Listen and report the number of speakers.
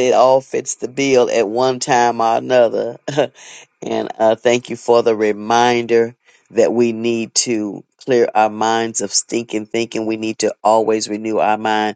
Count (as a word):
one